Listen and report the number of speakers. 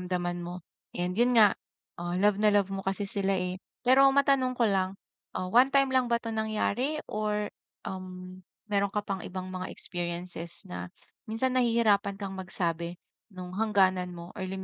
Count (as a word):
one